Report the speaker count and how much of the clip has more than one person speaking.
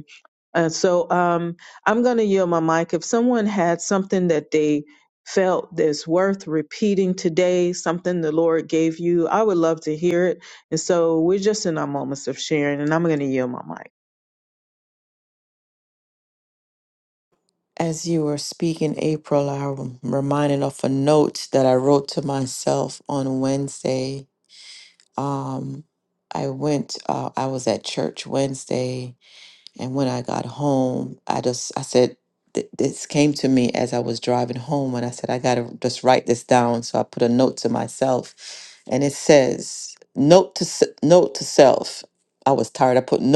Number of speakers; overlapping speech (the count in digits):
2, no overlap